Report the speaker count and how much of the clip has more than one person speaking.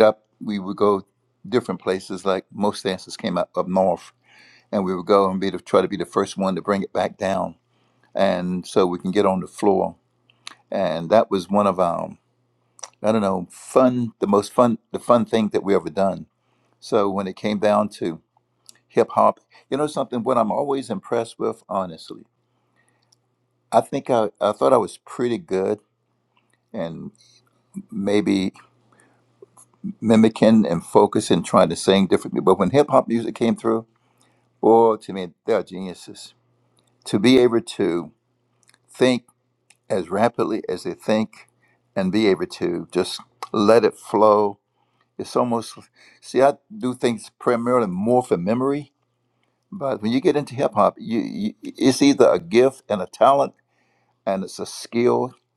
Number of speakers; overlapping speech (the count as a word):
one, no overlap